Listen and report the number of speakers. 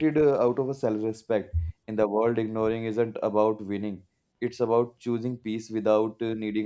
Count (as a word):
one